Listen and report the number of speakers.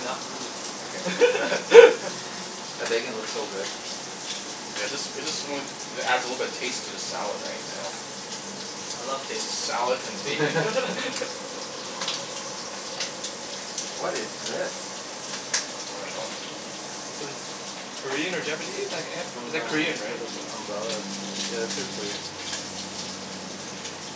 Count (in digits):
3